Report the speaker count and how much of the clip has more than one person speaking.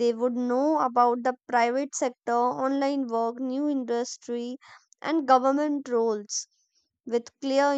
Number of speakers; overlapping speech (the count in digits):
1, no overlap